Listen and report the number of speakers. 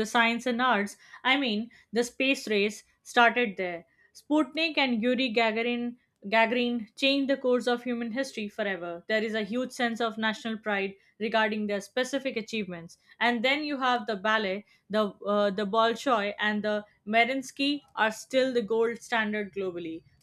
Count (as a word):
one